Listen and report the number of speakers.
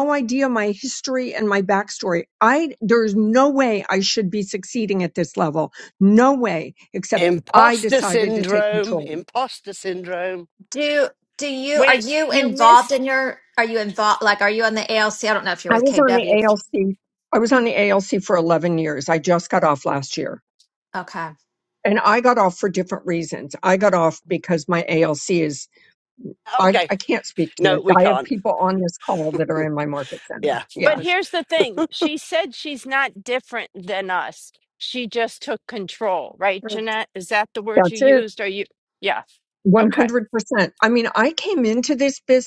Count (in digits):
4